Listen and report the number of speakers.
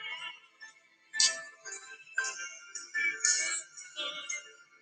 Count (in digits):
0